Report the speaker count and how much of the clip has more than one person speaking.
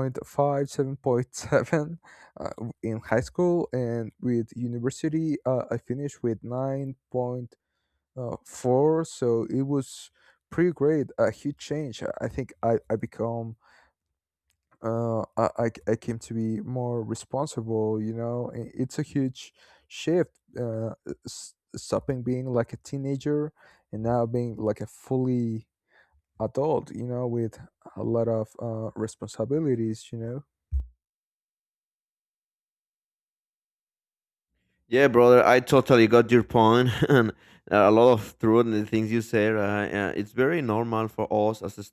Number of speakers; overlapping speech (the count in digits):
2, no overlap